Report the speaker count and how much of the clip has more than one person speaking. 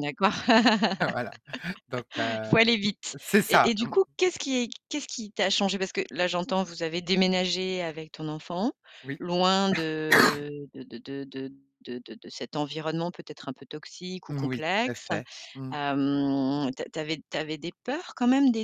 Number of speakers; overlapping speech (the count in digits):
2, about 8%